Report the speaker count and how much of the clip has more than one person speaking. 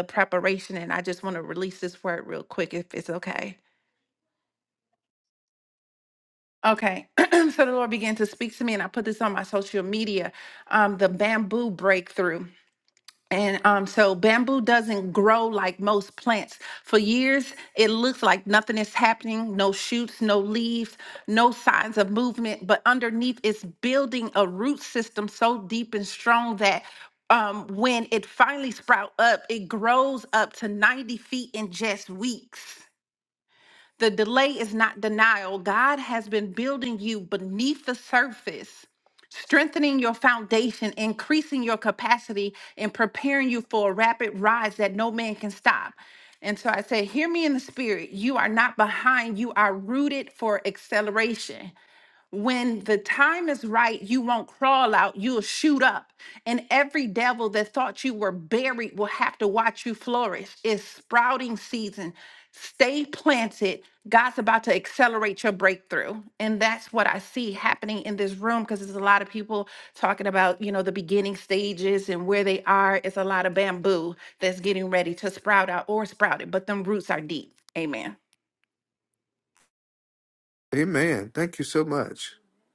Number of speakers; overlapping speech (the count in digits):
2, no overlap